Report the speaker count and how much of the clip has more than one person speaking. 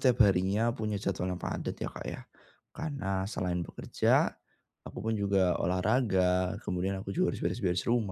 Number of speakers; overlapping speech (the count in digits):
1, no overlap